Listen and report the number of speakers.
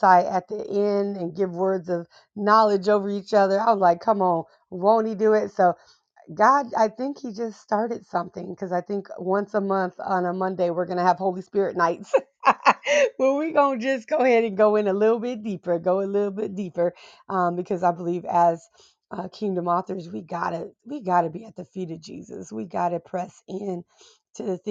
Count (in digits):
1